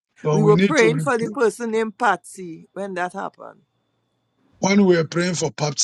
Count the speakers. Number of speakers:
two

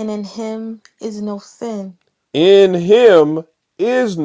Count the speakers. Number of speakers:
two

